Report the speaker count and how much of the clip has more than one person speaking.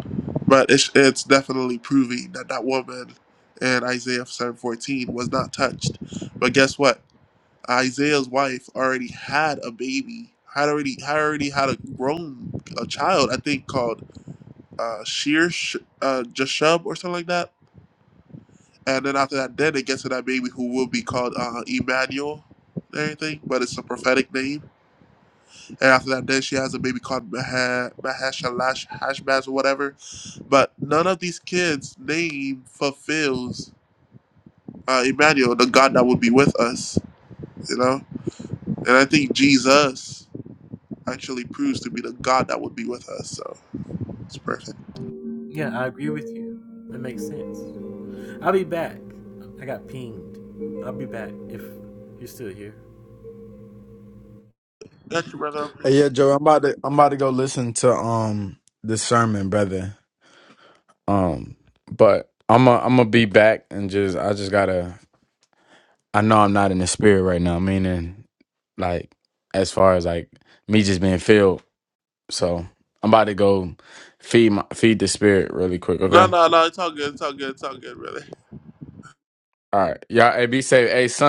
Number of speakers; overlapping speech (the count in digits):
3, under 1%